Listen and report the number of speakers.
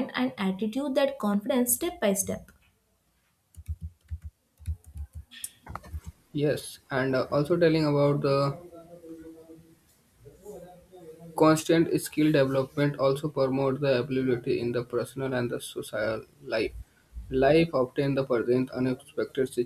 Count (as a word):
two